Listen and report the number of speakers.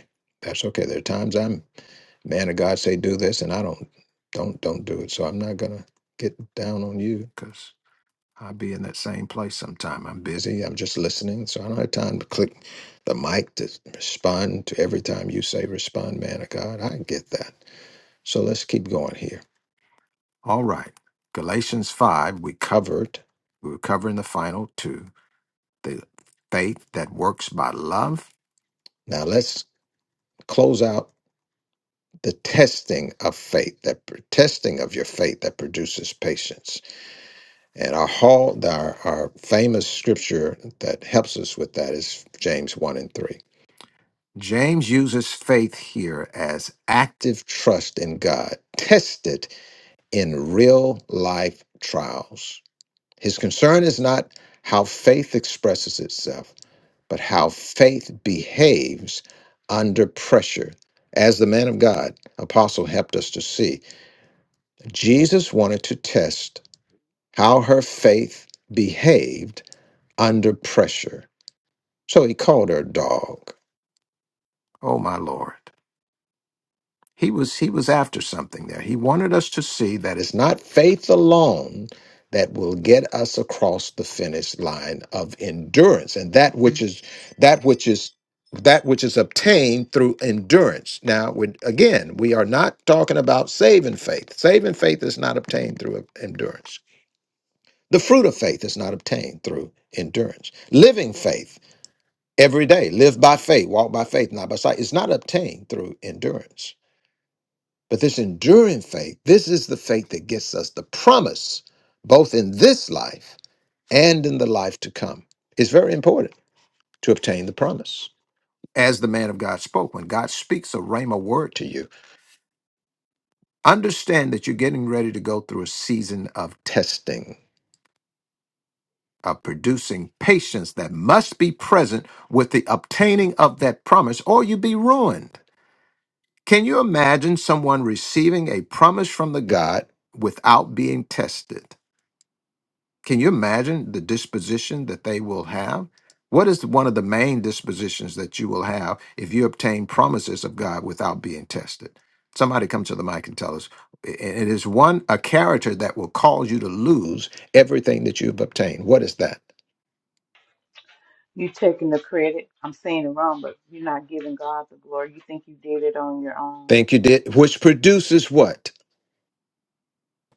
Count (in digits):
2